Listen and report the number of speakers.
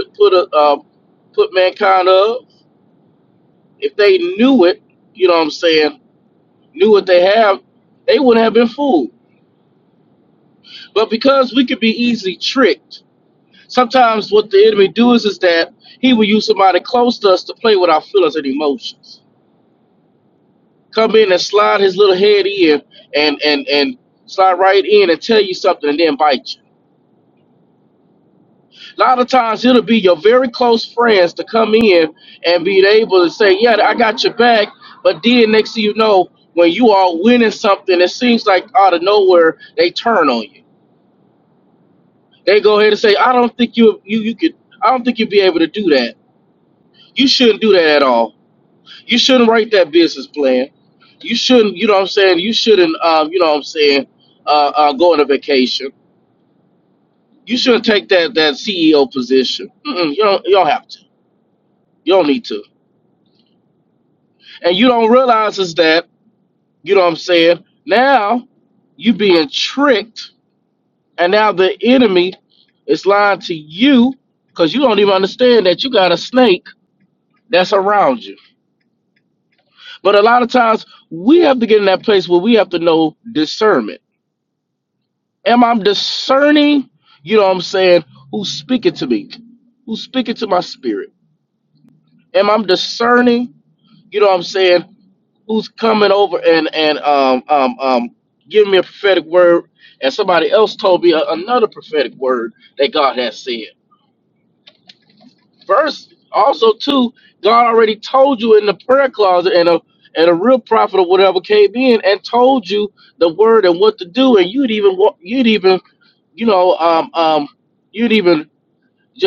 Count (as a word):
one